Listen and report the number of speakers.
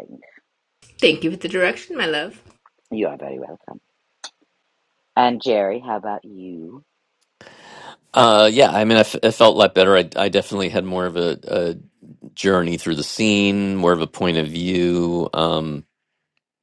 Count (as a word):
three